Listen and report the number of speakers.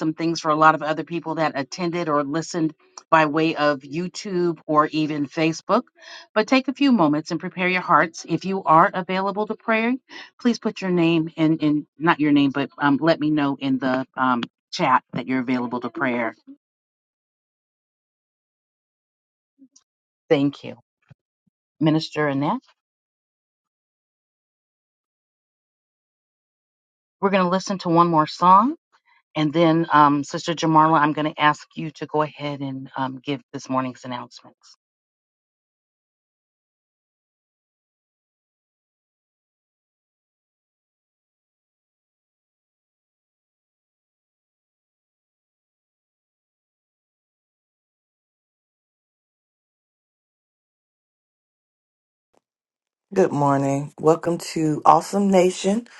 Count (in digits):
2